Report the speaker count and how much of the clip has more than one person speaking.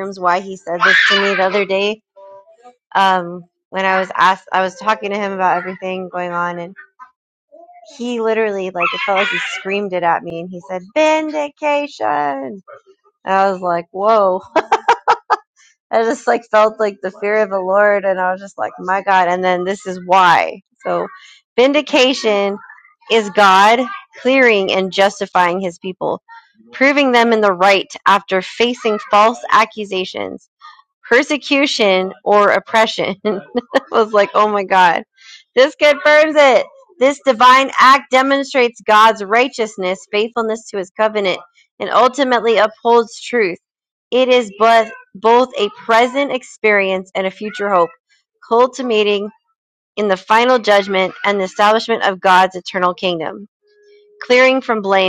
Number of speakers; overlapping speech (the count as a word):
one, no overlap